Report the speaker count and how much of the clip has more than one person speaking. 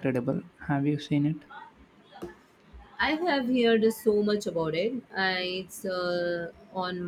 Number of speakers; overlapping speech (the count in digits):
2, no overlap